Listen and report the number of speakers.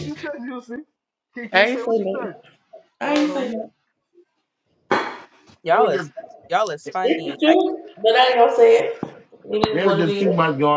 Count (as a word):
four